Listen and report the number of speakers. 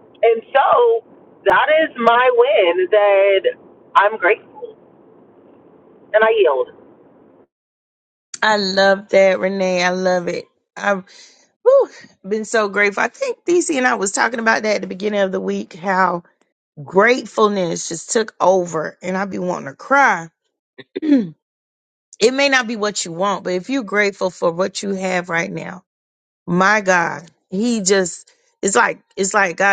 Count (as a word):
two